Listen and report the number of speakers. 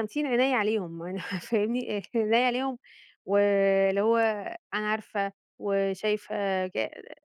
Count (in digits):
1